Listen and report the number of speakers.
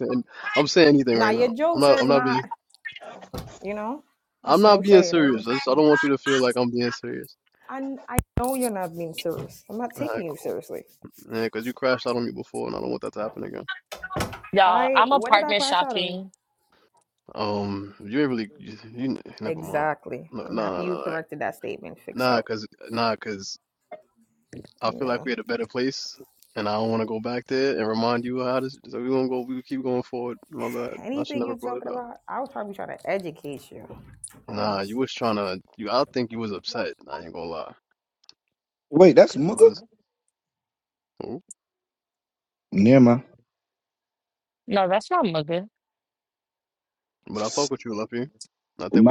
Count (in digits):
4